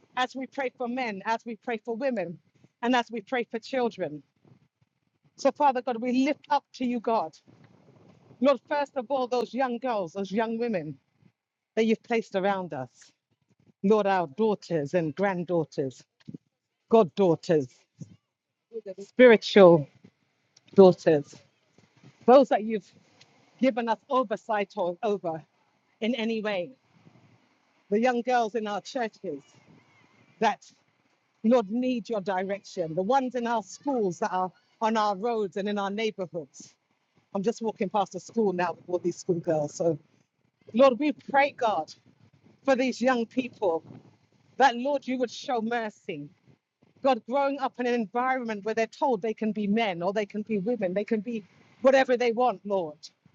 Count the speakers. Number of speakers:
1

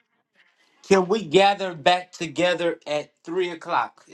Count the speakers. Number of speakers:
1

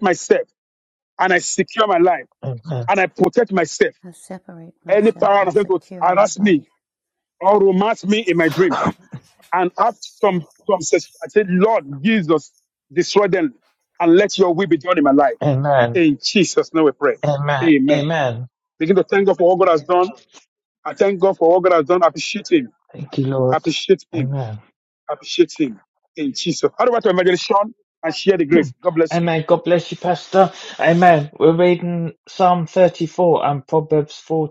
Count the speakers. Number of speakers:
3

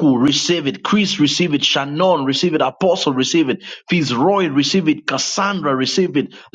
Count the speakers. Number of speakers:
1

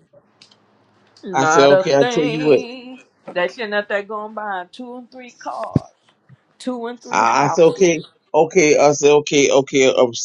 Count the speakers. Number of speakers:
2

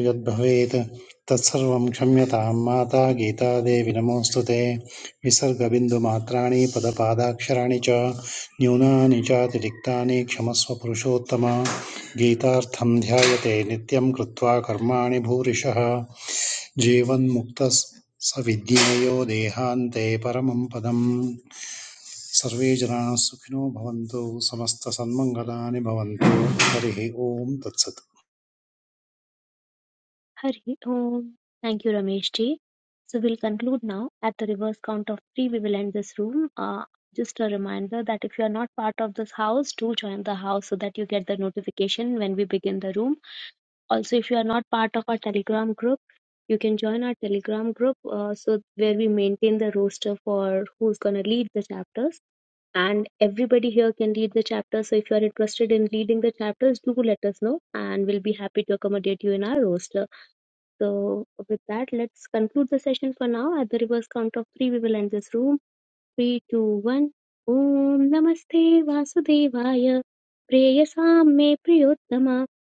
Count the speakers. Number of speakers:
2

